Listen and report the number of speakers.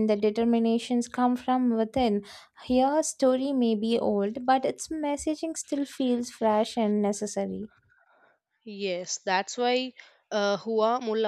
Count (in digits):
2